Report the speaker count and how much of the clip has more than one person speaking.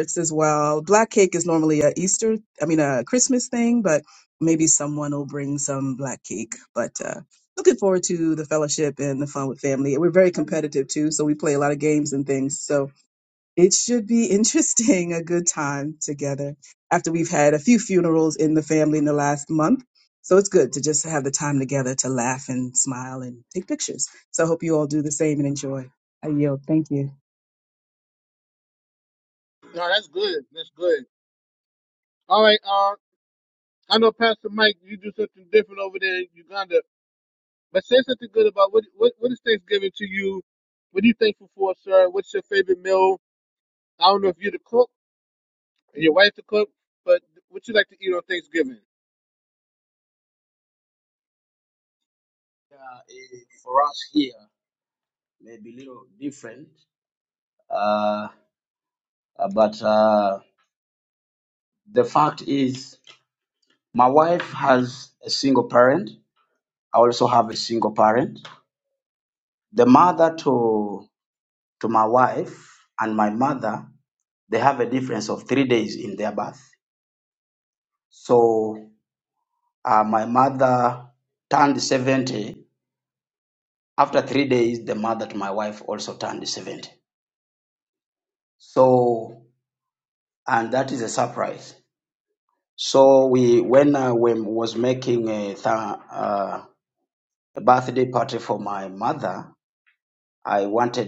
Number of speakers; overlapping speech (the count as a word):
three, no overlap